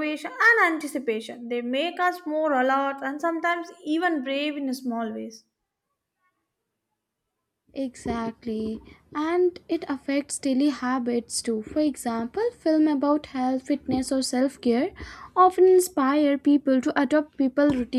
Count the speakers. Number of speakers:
two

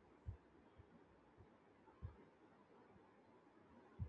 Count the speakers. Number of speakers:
zero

